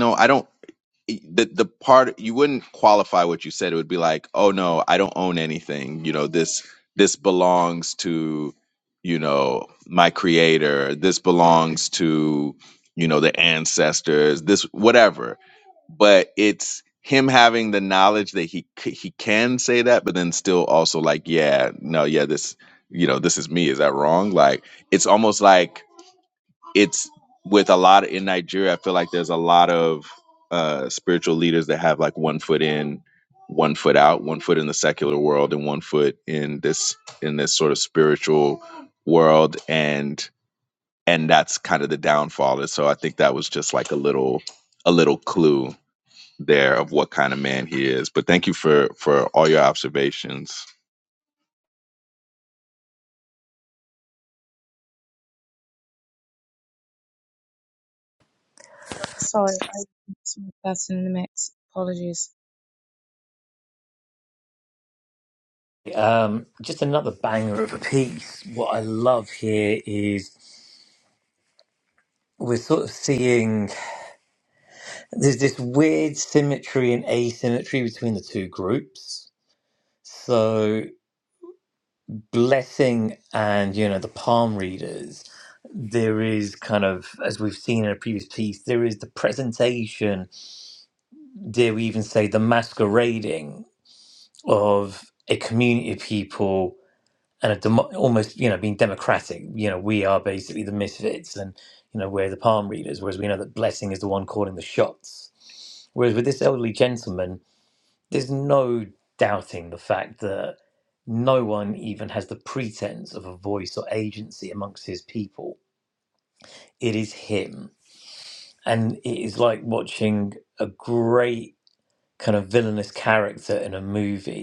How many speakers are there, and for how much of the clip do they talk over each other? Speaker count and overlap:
three, no overlap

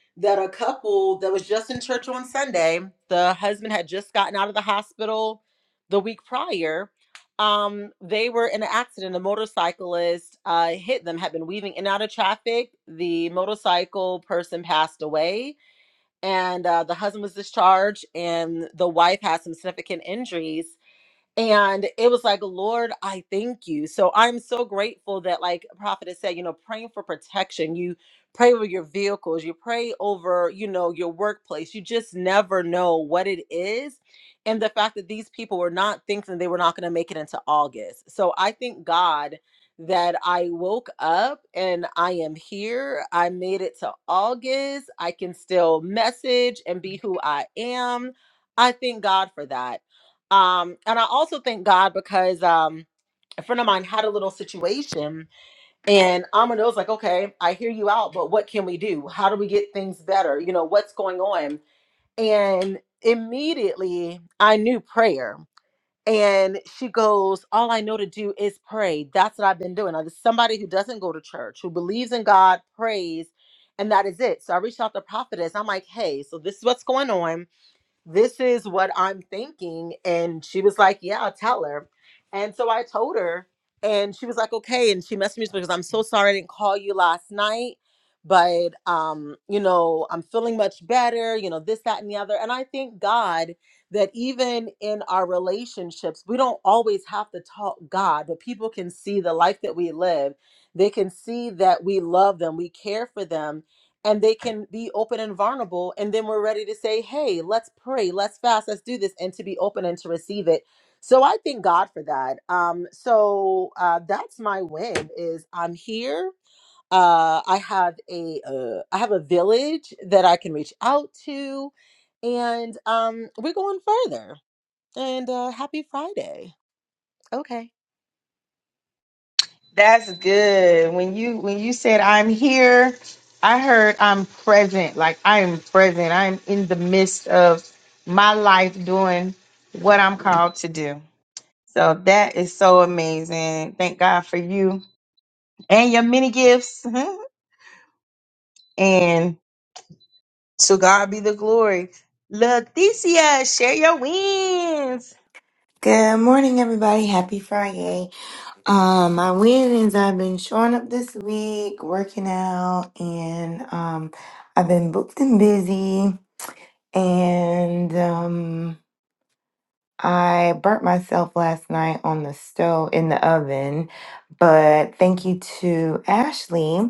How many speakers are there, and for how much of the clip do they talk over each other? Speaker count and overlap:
three, no overlap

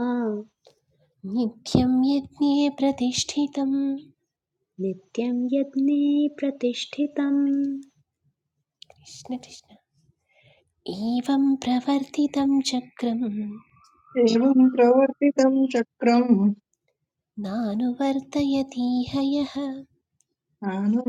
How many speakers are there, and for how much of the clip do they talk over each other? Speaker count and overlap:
three, no overlap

